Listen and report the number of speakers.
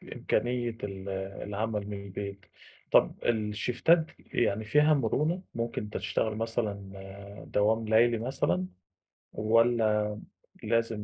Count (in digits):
1